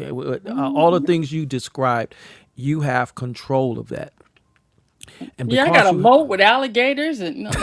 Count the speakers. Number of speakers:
2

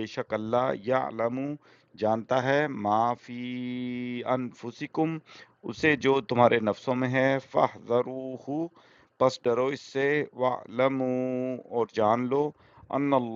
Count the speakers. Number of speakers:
1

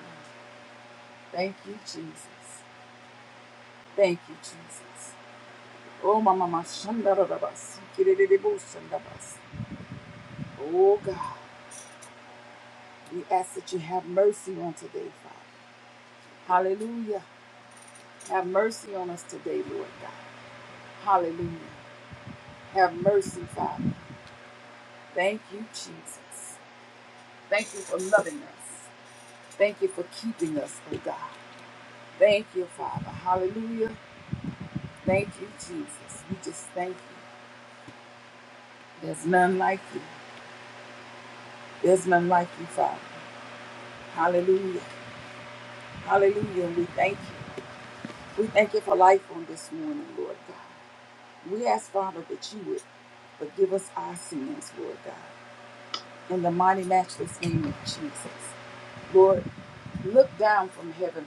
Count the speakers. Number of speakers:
1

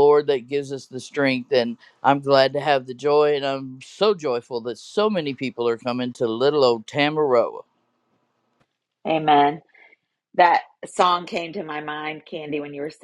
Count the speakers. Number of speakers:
2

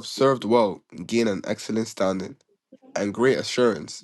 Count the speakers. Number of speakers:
1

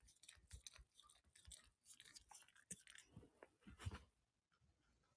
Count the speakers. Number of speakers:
0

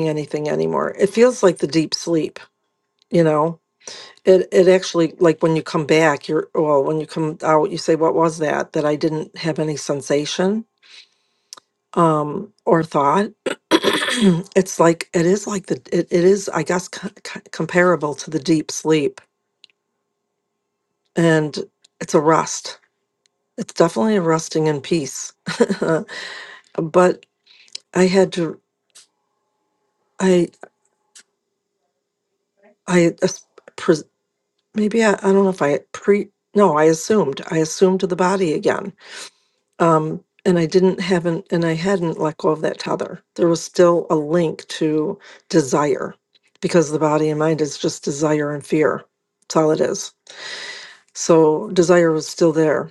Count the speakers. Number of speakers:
1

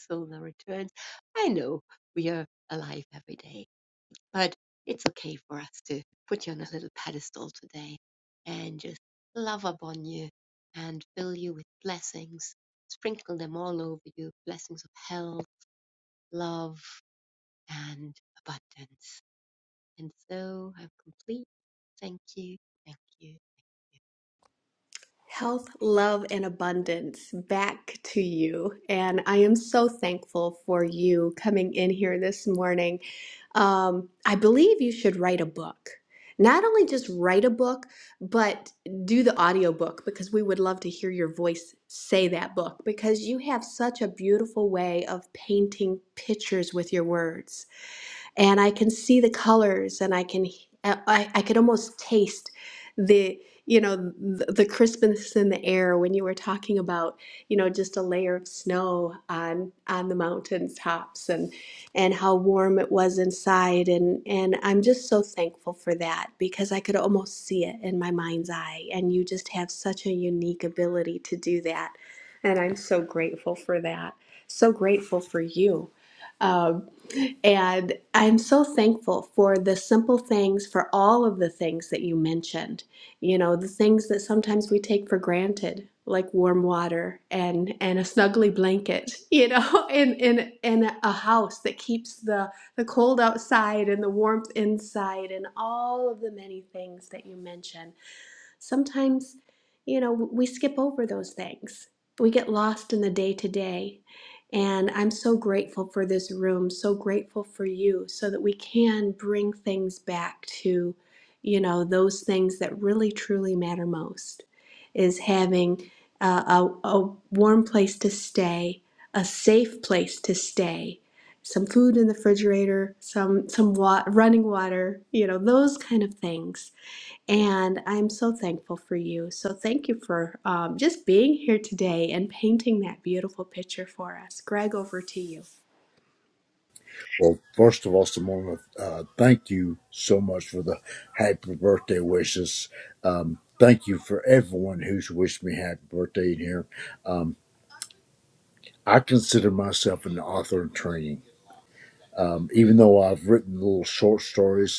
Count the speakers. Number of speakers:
3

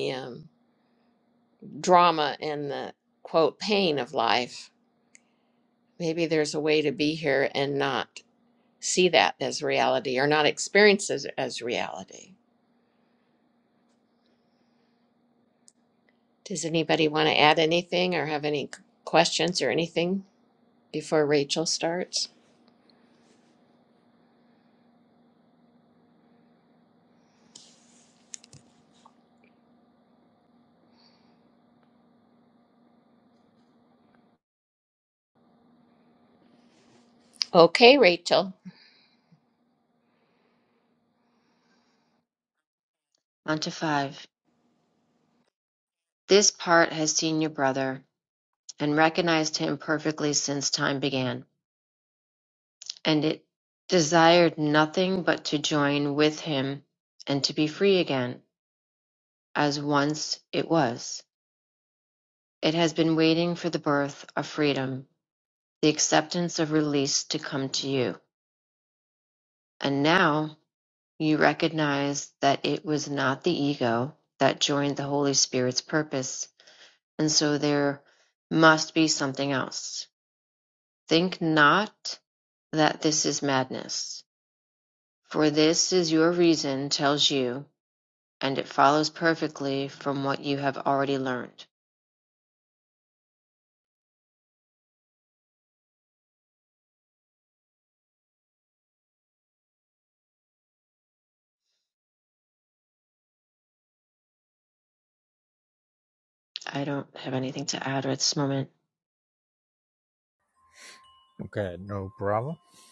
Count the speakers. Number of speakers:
3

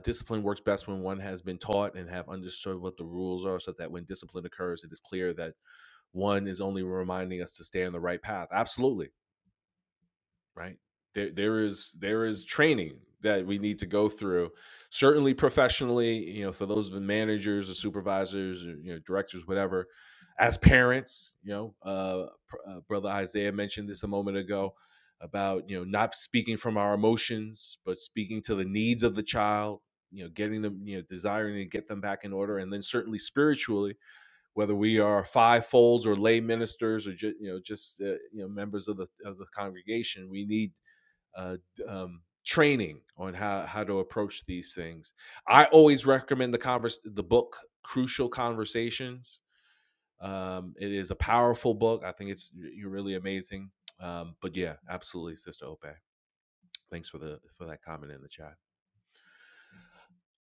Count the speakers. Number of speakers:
1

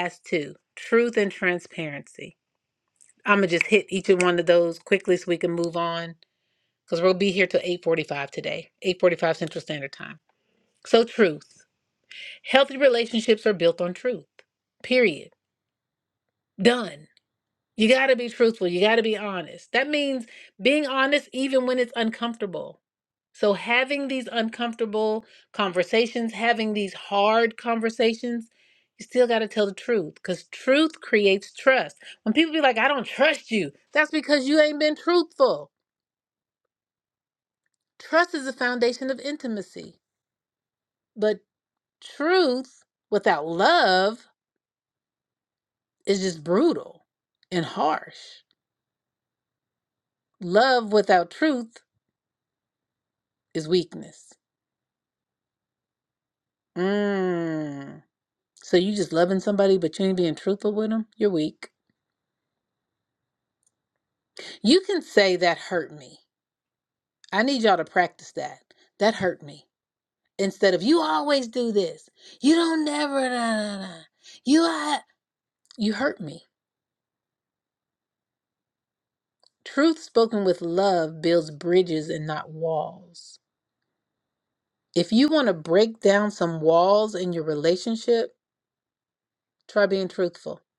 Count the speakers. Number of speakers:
1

